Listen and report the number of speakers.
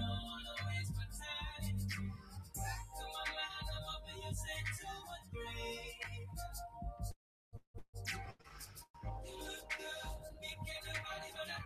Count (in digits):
0